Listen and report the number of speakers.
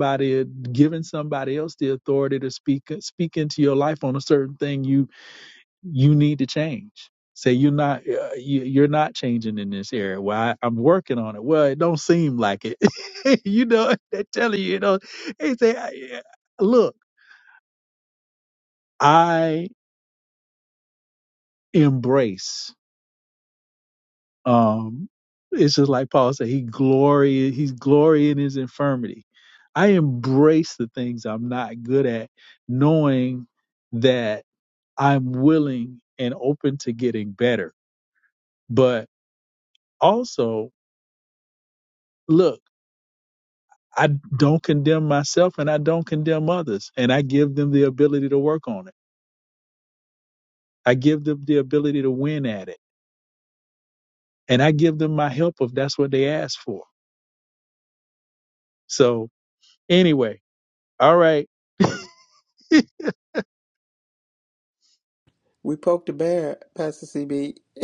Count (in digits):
2